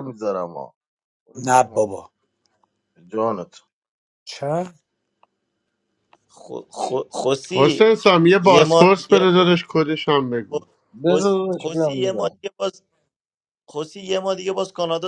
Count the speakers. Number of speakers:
4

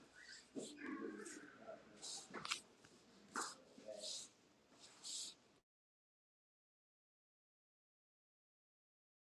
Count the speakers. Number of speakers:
0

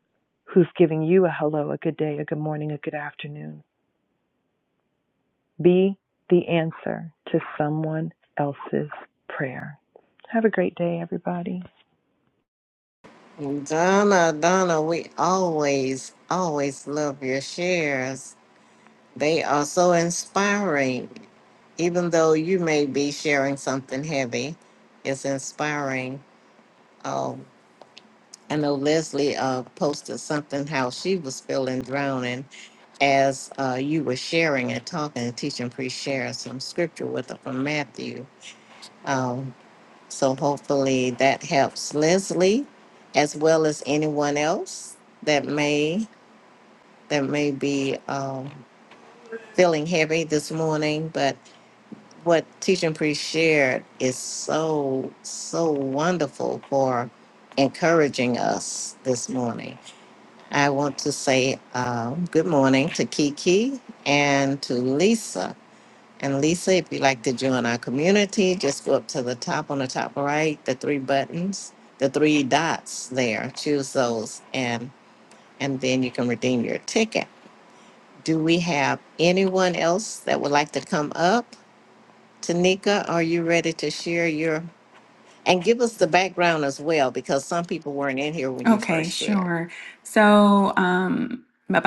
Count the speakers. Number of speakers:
3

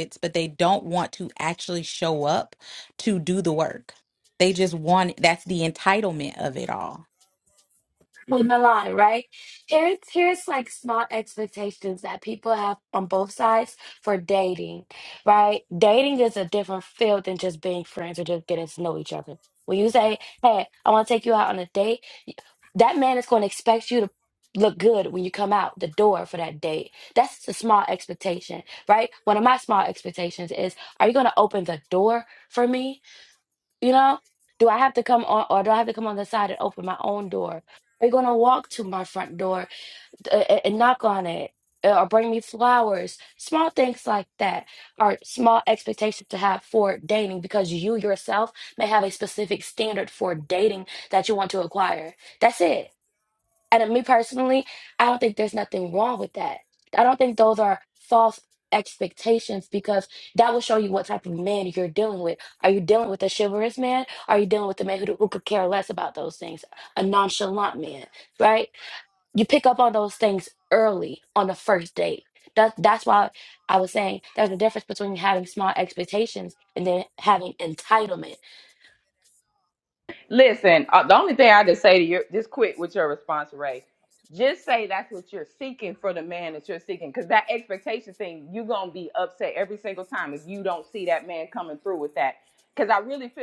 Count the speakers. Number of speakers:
3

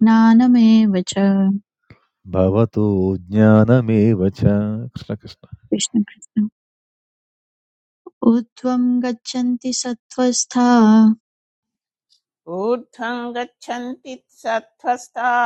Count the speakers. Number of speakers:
3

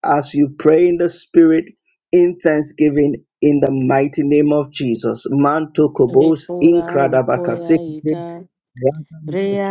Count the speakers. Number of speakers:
2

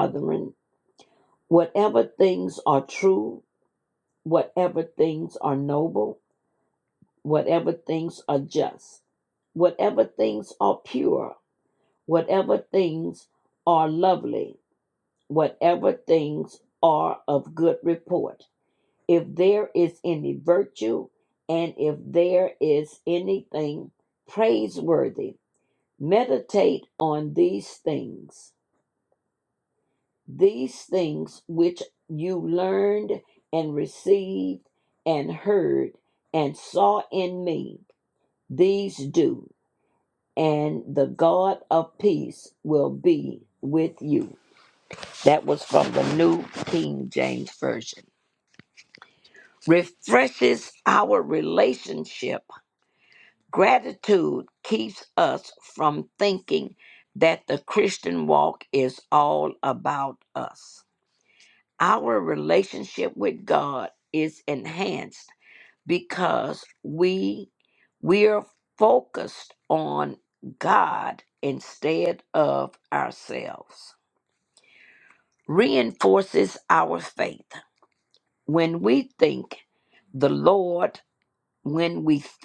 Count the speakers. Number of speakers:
1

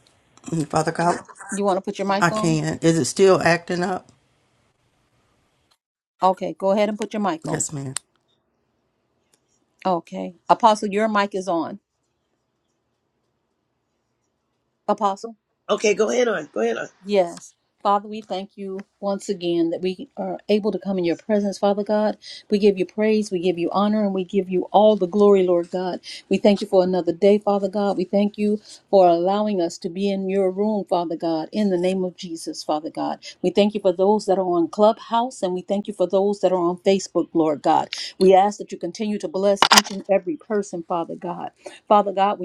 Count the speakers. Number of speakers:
3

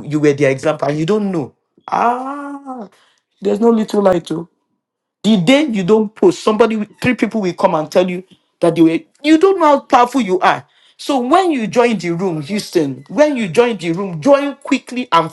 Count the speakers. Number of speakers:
1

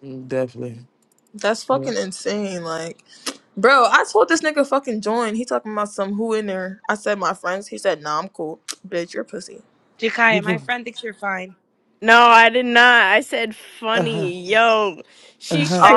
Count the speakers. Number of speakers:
4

